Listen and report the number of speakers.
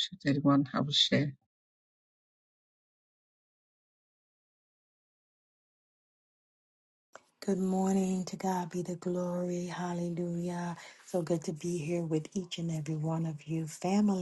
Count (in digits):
2